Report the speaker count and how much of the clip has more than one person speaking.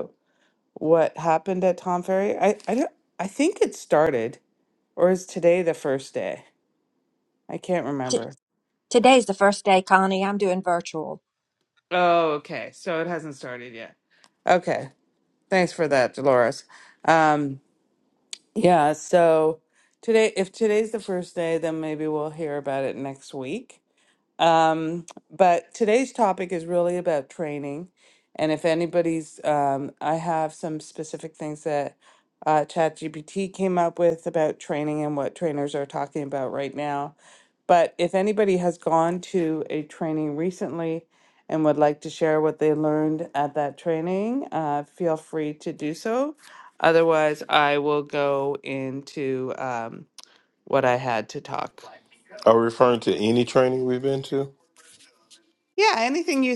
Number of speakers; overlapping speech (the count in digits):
3, under 1%